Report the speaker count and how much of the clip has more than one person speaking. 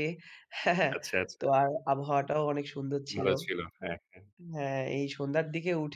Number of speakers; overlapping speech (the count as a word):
two, about 6%